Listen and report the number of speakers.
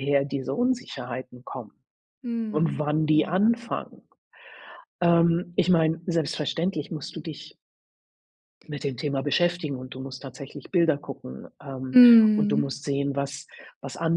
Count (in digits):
2